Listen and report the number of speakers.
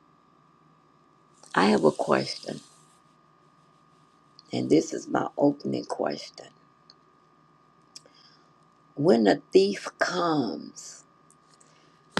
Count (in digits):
1